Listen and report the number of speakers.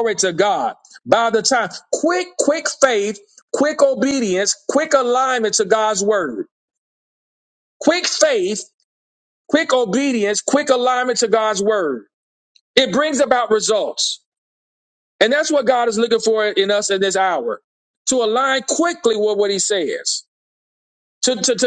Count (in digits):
1